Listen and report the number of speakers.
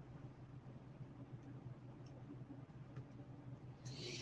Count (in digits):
0